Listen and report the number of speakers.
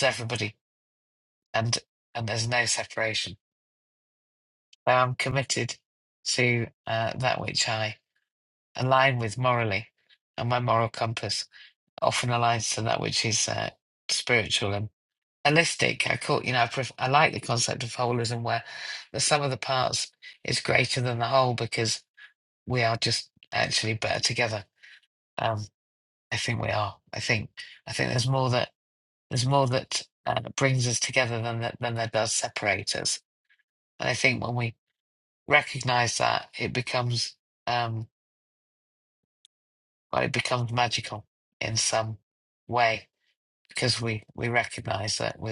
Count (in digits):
1